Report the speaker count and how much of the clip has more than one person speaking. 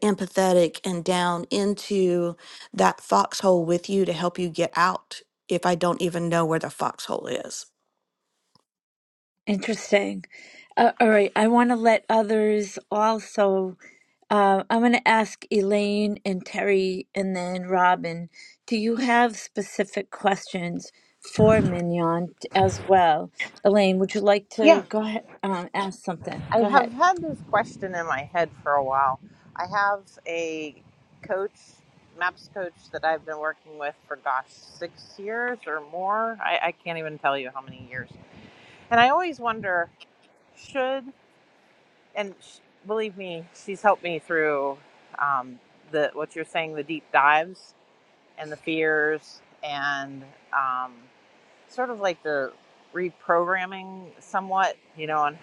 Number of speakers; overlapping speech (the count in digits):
3, about 1%